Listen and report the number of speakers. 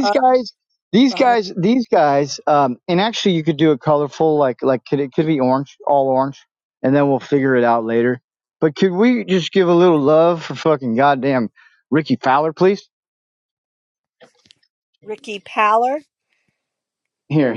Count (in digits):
2